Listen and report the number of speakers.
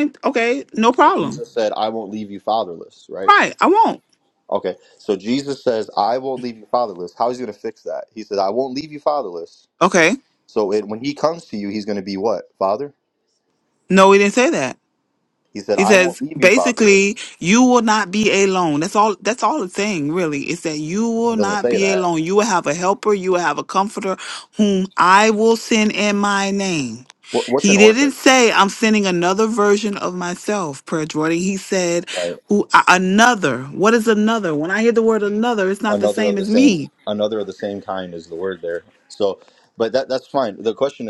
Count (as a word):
two